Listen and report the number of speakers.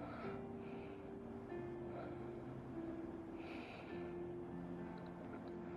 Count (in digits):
0